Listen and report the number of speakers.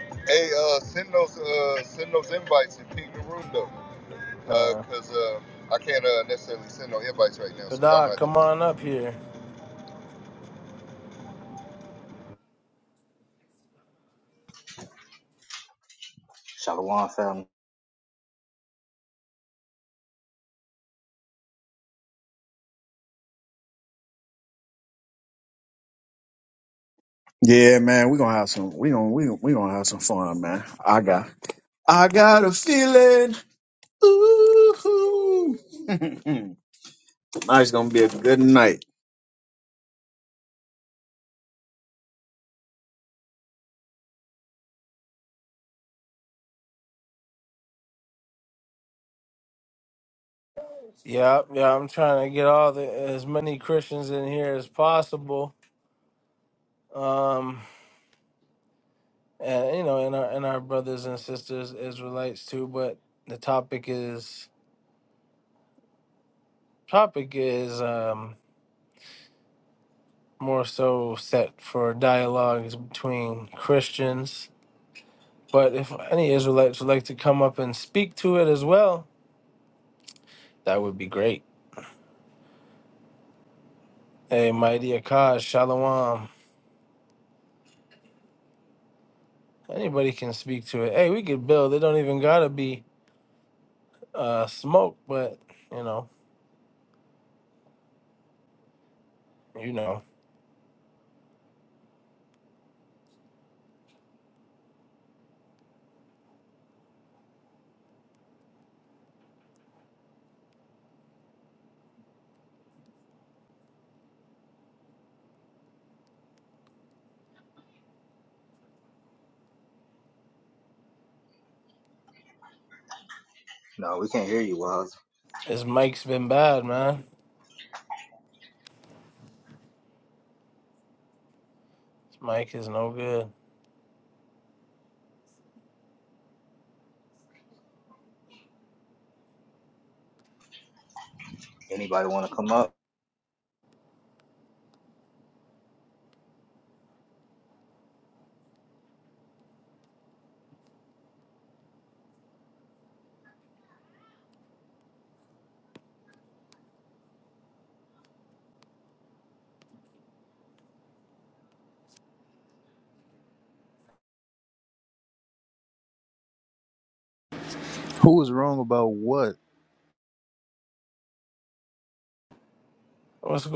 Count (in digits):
5